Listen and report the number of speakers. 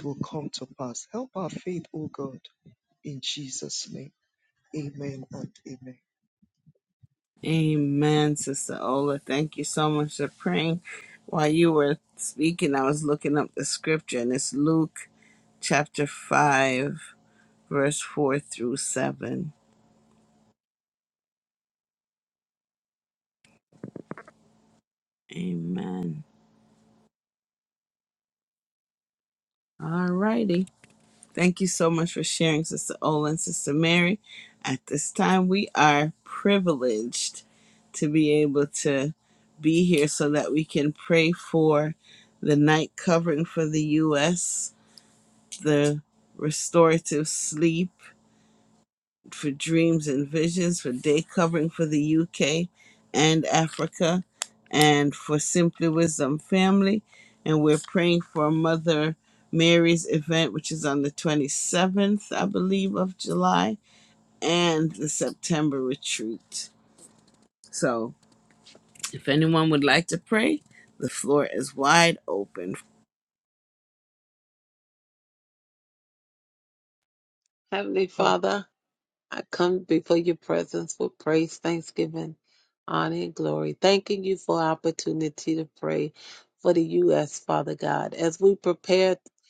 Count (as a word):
three